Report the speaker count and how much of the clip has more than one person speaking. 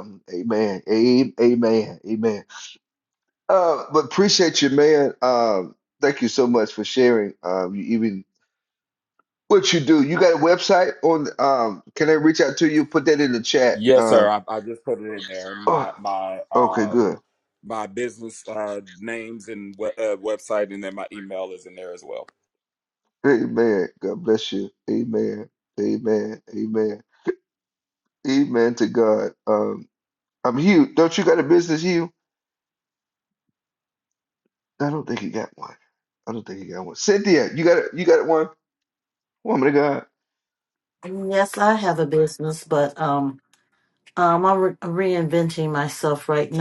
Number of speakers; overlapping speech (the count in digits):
3, about 3%